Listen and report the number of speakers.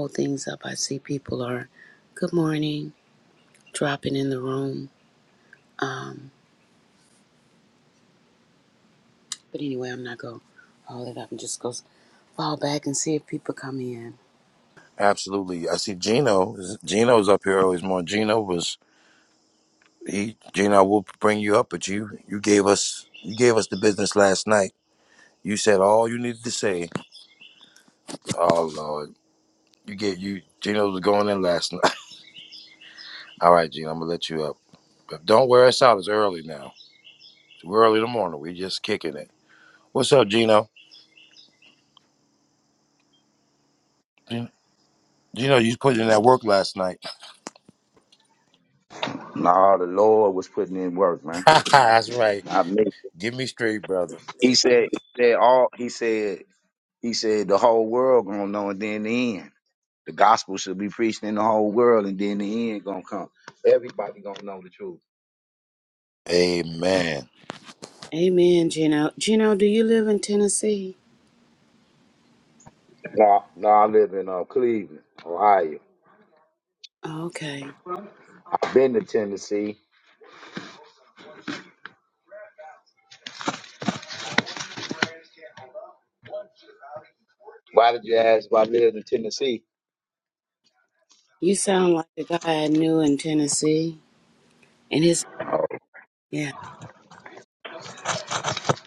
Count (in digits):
3